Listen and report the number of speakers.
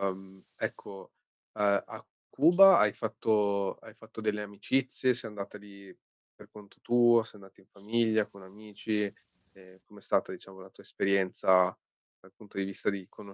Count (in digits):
1